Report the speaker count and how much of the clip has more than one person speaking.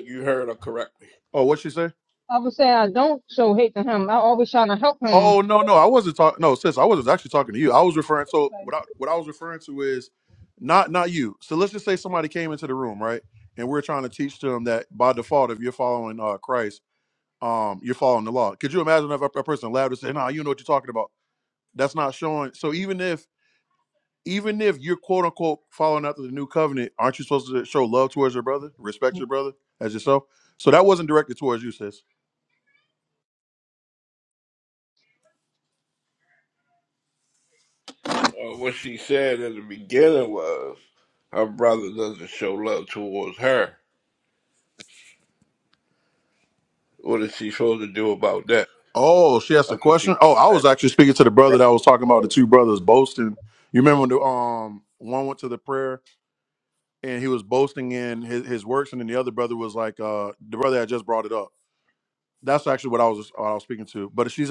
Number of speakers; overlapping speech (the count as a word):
three, about 1%